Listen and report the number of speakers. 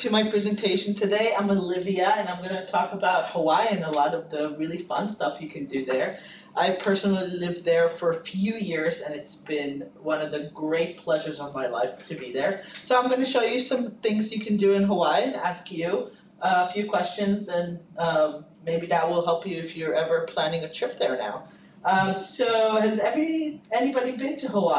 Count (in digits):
1